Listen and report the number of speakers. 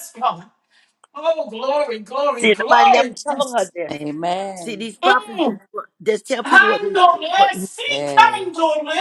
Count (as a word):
three